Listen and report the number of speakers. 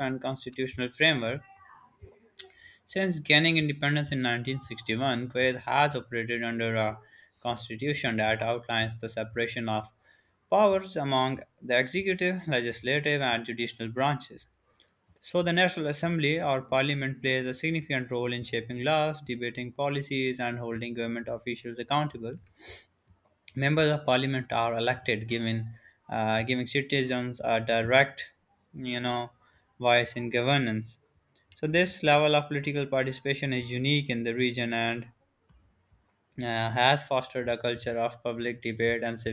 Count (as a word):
one